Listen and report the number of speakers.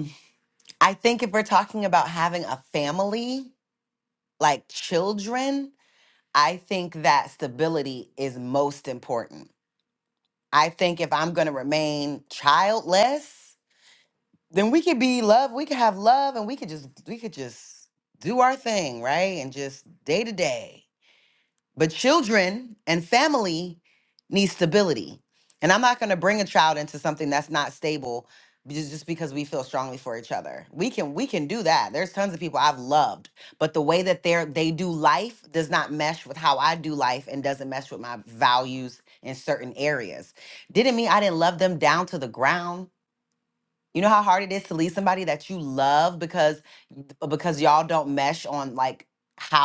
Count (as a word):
one